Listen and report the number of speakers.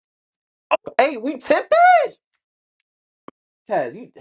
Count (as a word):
one